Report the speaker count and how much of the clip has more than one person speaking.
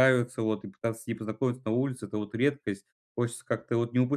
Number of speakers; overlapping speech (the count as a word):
one, no overlap